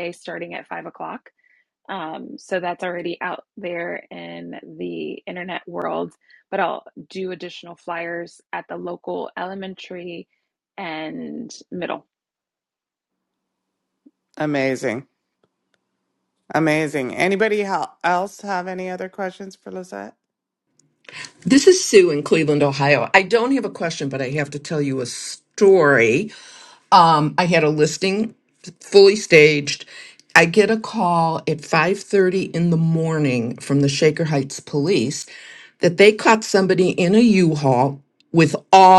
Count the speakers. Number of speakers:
3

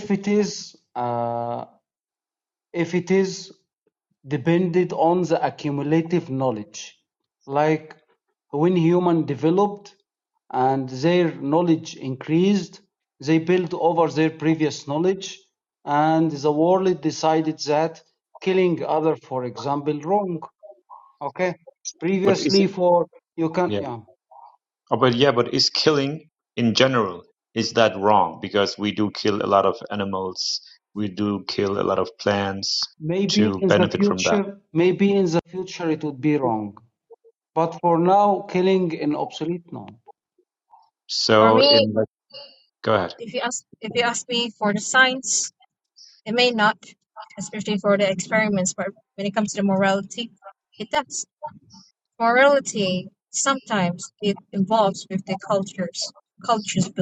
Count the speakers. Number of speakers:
3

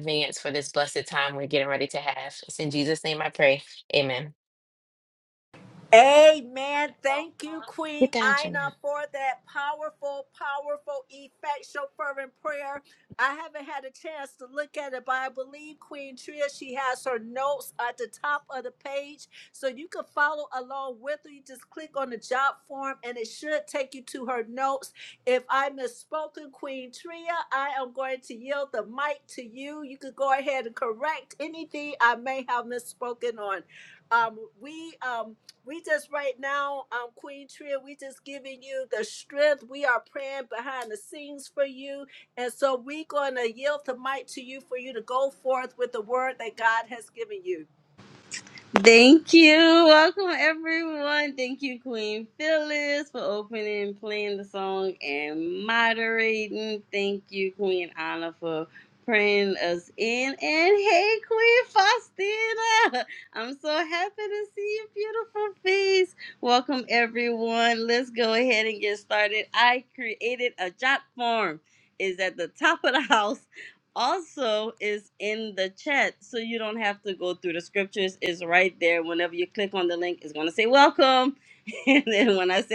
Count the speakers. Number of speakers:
3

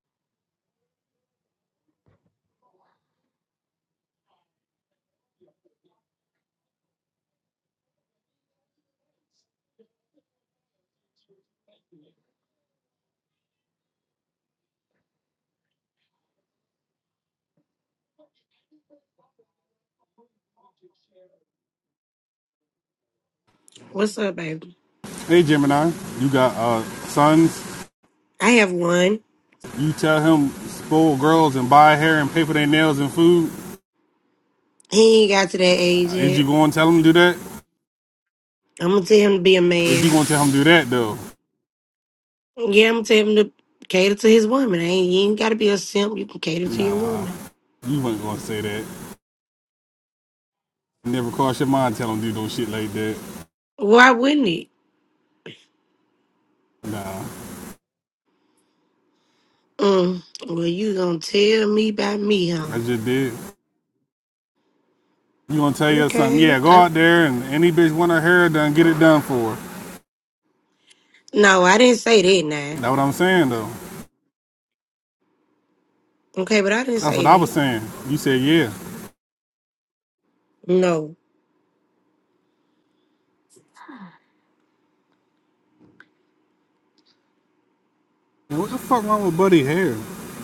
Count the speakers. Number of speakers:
2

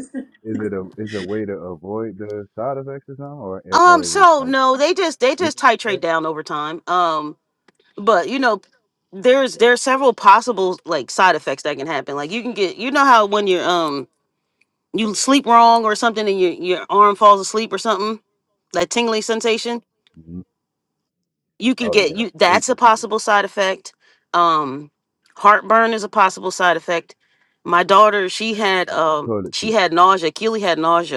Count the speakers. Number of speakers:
2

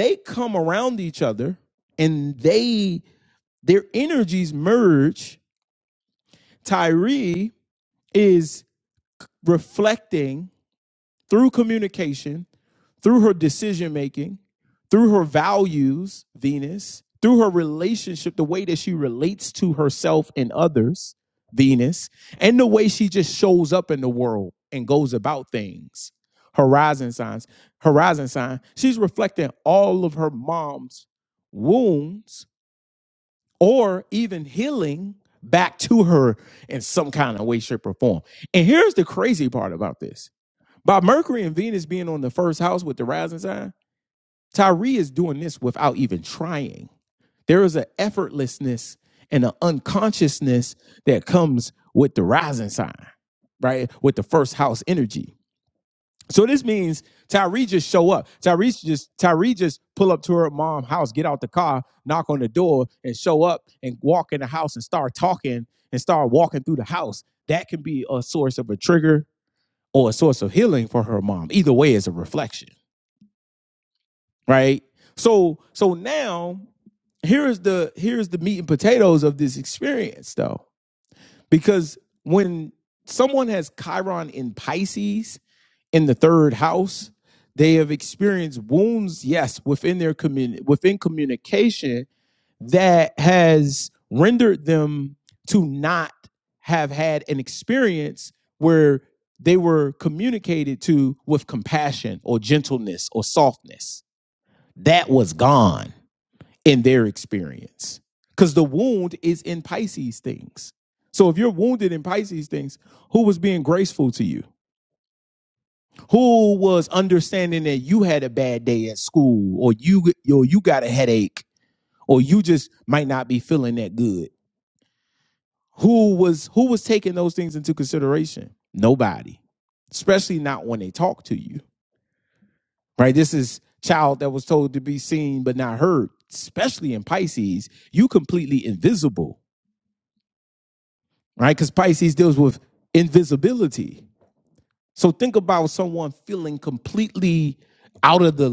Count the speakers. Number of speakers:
1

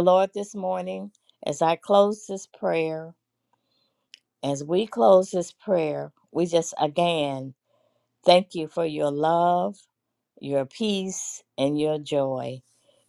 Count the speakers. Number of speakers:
1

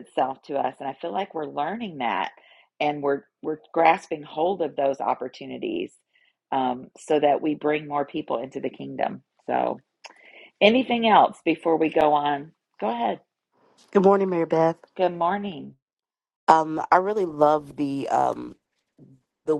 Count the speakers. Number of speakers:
2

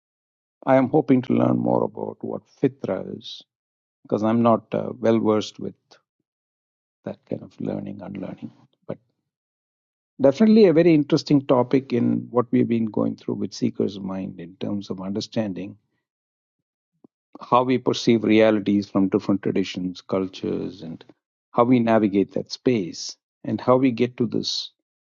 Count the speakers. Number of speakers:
1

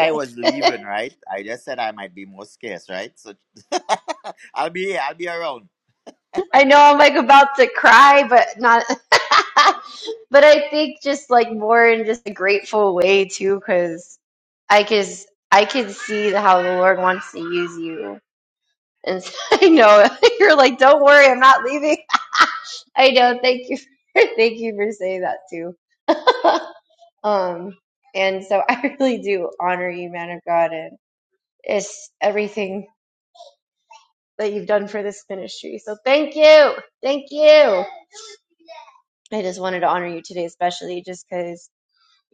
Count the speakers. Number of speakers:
2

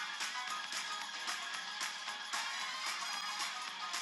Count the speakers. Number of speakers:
0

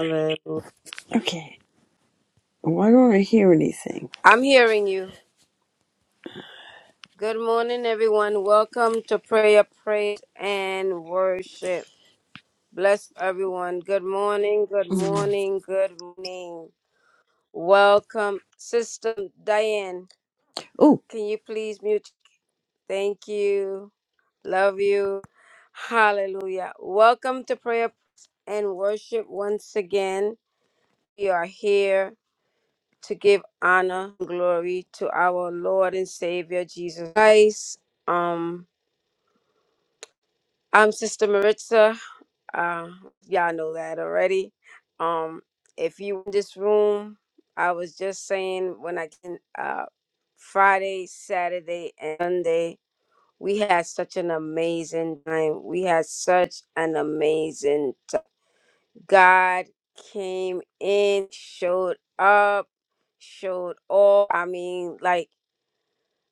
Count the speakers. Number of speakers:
2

